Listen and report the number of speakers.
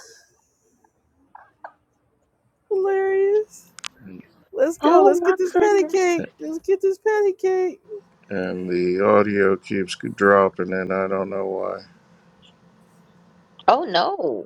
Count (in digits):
3